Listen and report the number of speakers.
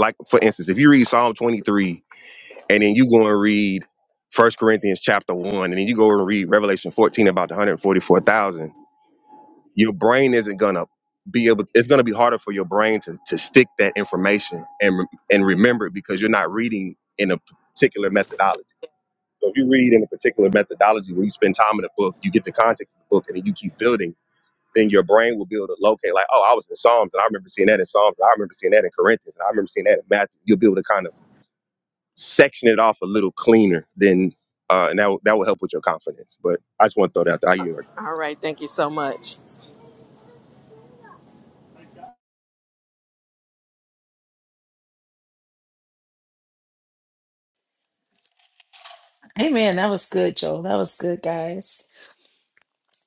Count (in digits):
3